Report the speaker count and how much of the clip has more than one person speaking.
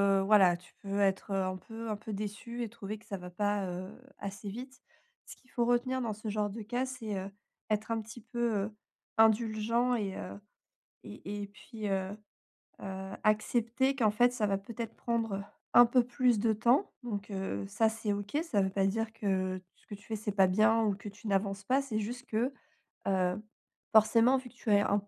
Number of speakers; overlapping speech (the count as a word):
one, no overlap